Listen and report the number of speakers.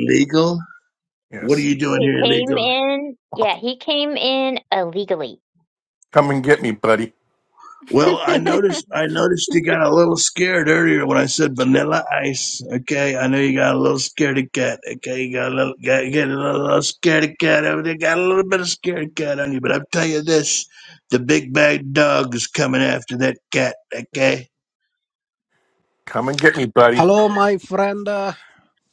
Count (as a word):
four